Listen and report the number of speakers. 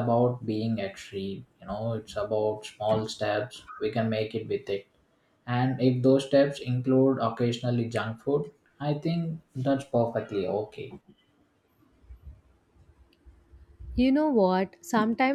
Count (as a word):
two